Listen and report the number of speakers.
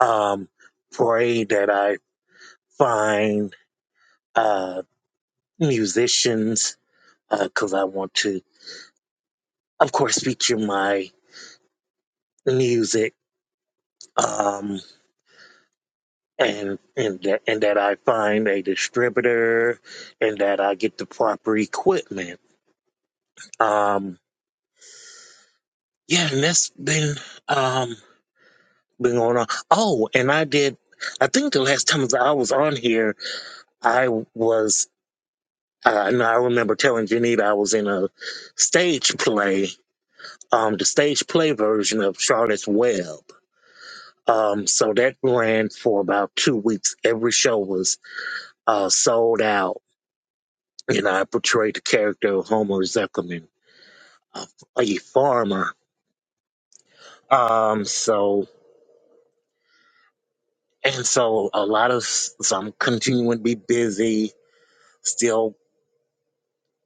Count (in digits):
1